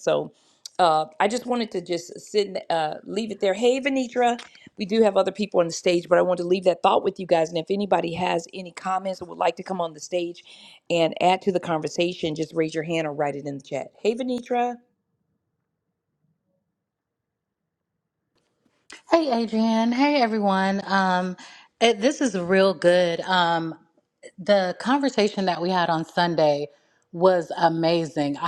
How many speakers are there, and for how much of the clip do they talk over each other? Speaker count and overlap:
two, no overlap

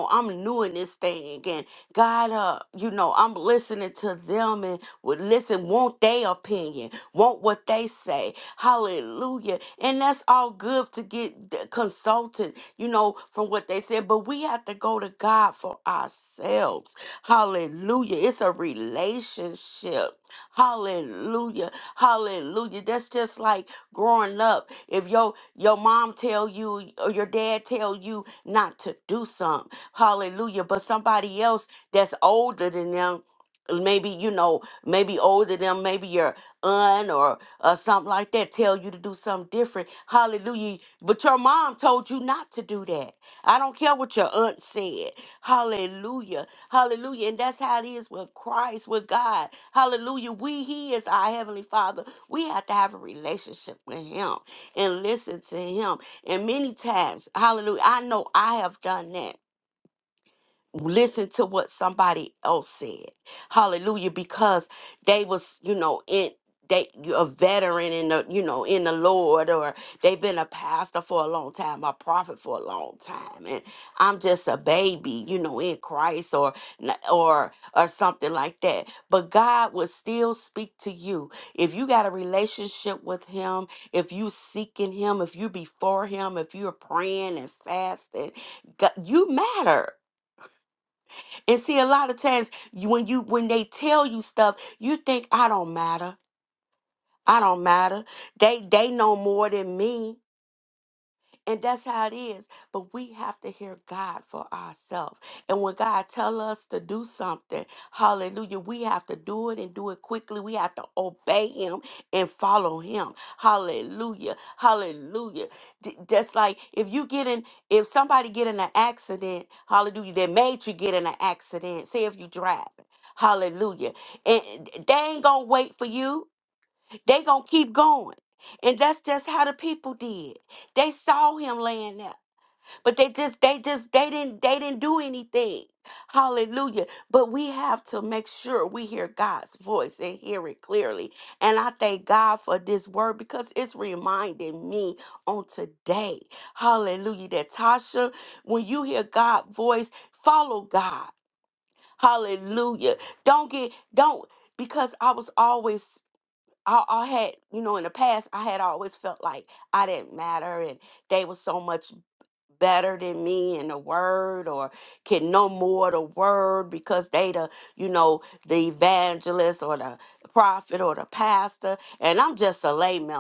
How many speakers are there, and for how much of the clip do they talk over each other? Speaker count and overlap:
one, no overlap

